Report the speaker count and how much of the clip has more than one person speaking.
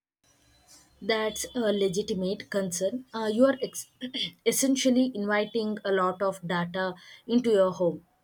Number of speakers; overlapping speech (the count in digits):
1, no overlap